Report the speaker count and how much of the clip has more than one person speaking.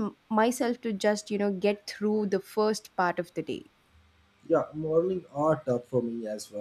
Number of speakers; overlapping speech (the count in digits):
2, no overlap